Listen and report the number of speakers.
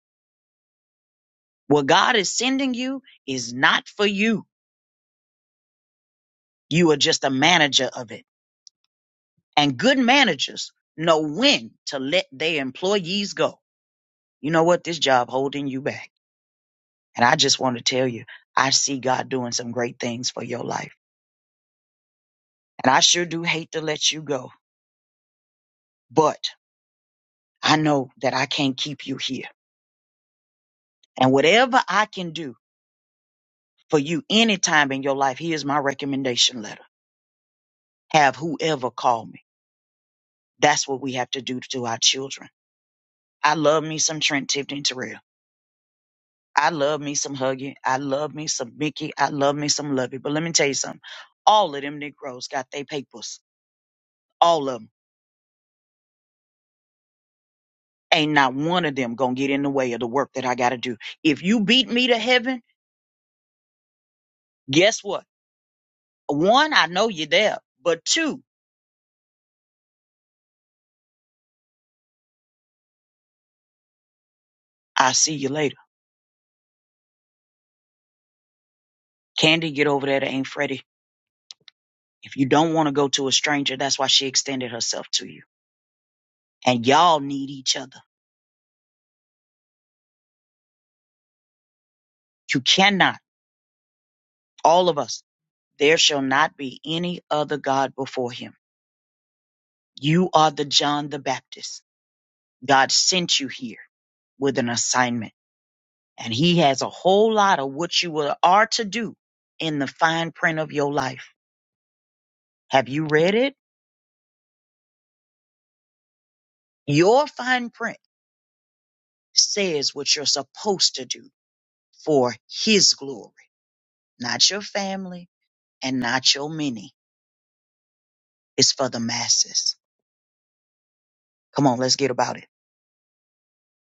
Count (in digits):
1